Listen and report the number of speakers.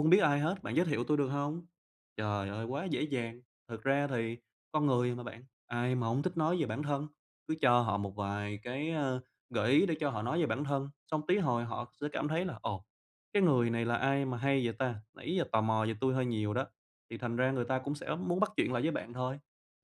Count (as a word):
one